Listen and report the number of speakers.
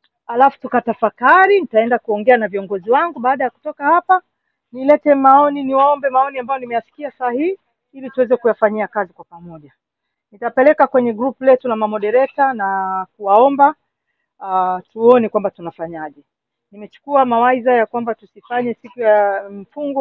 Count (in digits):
1